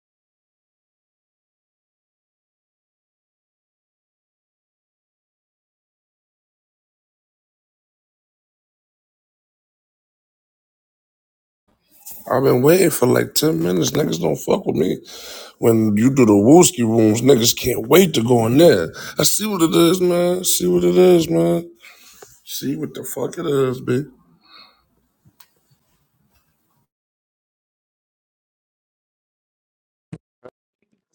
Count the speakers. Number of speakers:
1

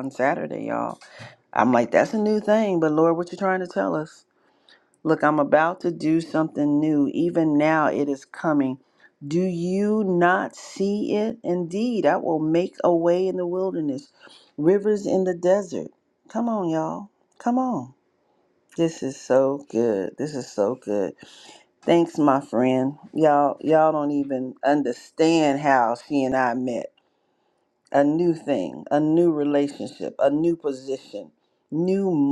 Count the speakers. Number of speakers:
1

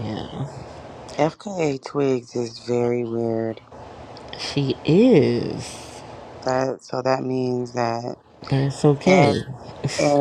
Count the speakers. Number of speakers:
2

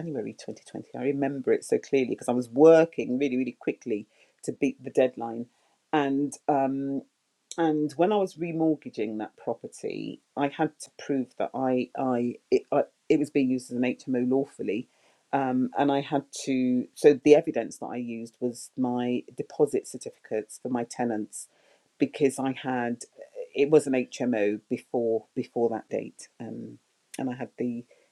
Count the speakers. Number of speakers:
1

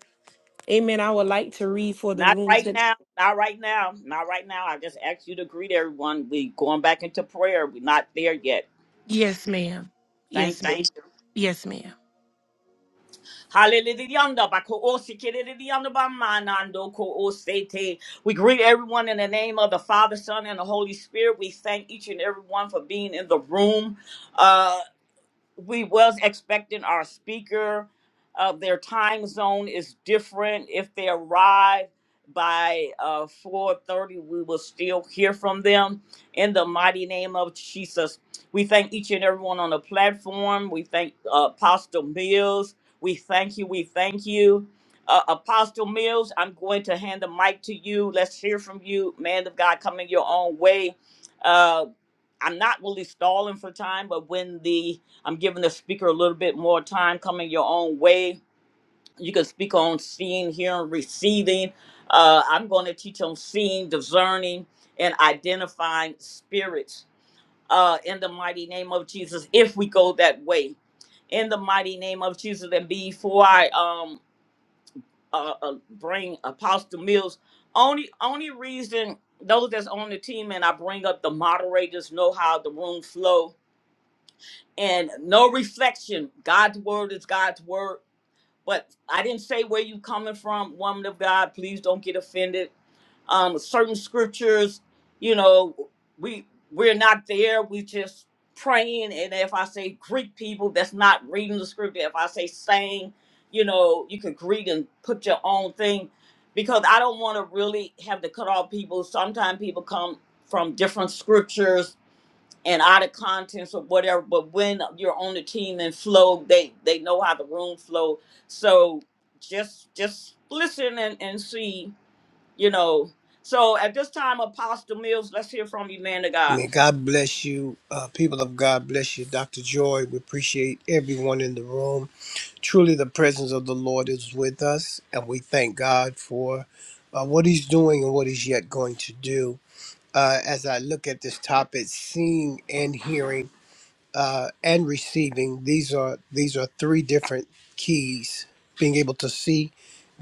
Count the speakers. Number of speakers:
3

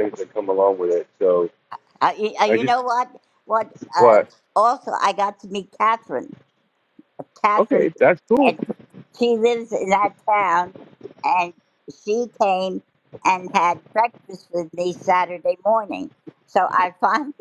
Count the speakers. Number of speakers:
2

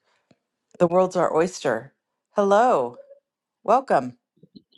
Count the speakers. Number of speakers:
1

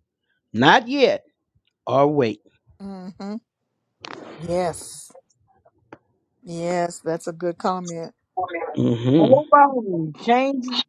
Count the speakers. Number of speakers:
3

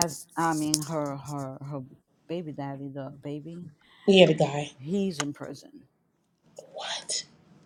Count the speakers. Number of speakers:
2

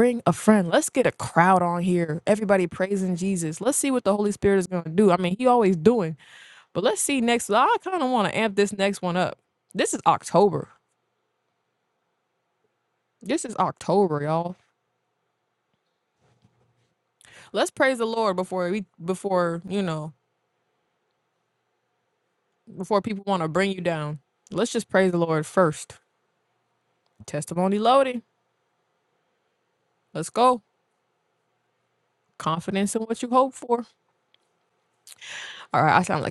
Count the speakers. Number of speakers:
1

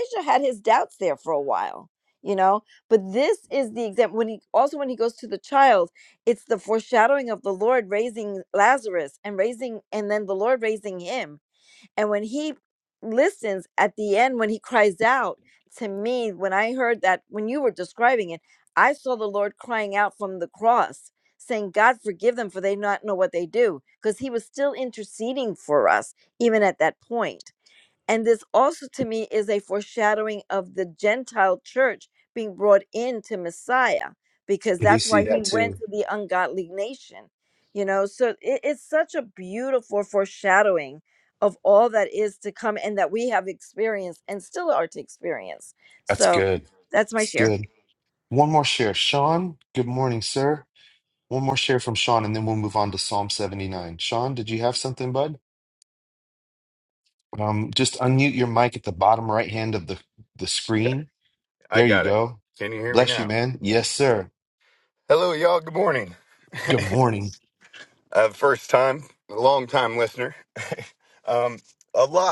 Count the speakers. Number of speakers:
3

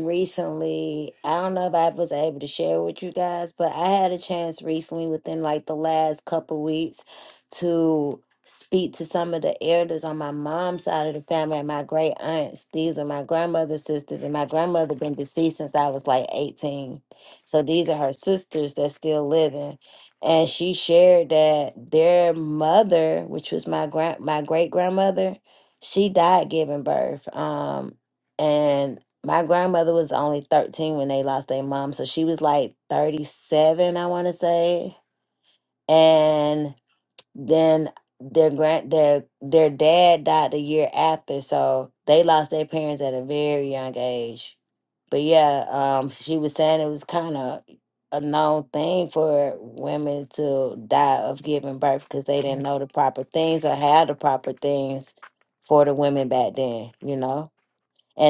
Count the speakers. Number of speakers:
1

